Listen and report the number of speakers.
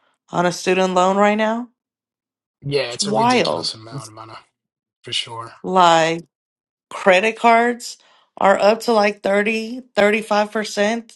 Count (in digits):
2